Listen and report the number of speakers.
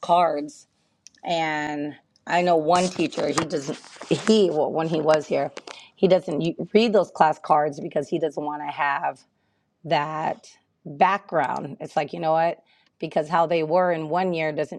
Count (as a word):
one